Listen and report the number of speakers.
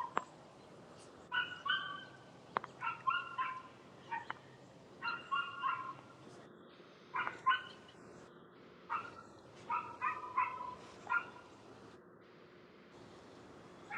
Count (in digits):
0